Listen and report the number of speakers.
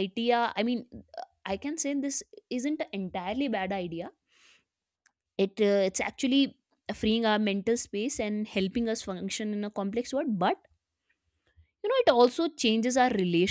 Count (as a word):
one